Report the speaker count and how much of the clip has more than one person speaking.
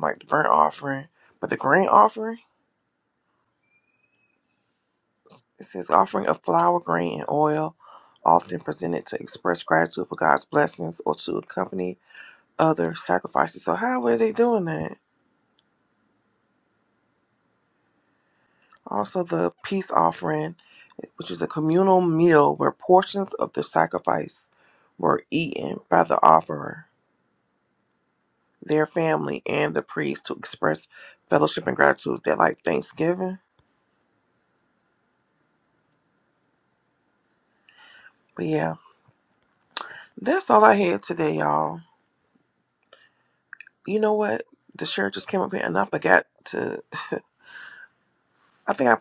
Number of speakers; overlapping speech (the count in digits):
1, no overlap